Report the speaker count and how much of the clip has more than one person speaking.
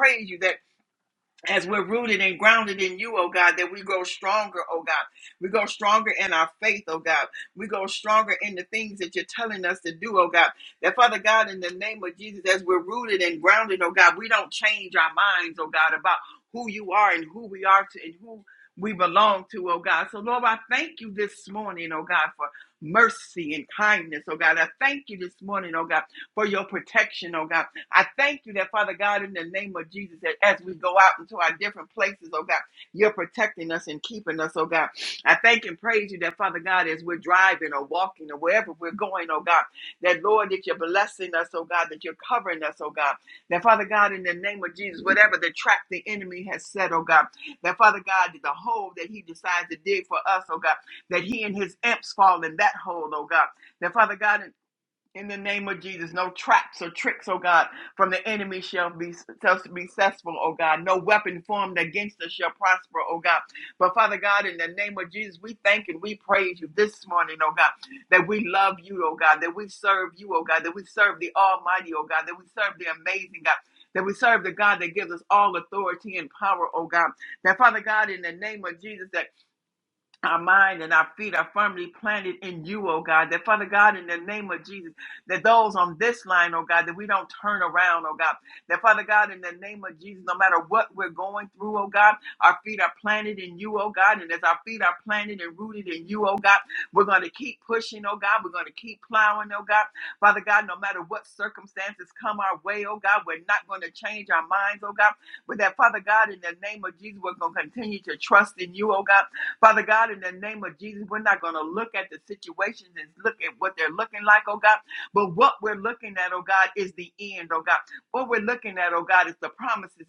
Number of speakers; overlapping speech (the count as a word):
one, no overlap